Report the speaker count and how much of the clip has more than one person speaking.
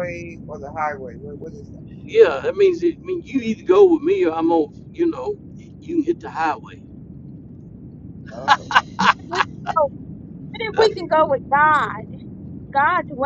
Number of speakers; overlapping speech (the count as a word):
three, no overlap